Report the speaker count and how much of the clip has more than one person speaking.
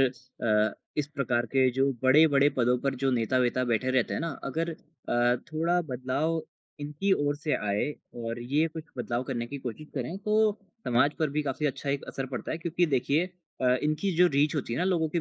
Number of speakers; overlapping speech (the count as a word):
one, no overlap